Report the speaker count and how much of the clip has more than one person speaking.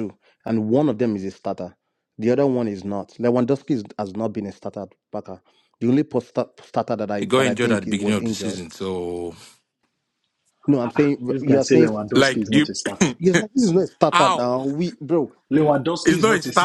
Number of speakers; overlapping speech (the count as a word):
three, about 21%